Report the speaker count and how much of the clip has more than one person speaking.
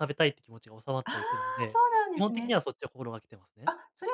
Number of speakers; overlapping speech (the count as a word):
two, about 14%